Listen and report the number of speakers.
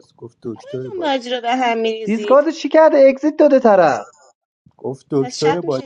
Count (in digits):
3